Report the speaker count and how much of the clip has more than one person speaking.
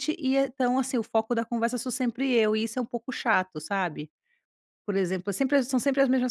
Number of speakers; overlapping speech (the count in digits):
1, no overlap